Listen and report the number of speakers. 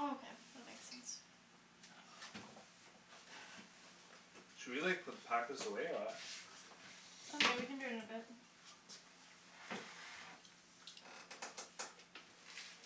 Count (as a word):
two